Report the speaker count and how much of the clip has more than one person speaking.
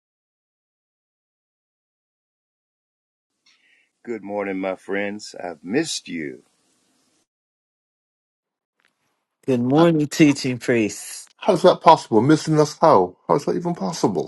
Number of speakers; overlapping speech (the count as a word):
three, about 1%